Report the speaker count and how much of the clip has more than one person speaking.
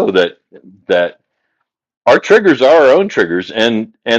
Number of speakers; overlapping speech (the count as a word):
one, no overlap